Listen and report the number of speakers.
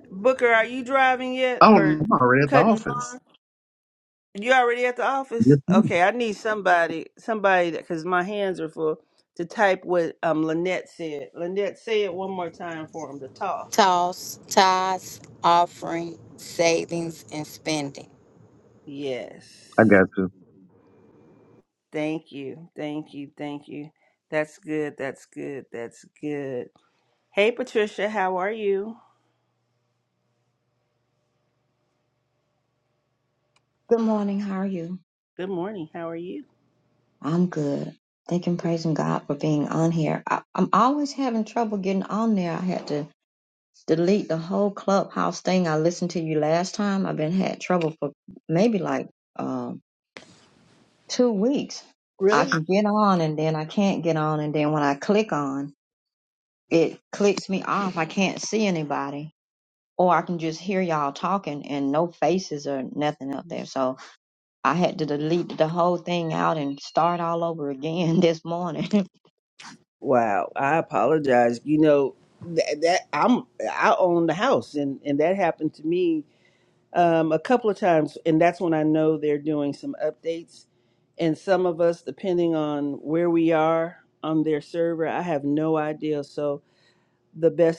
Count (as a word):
four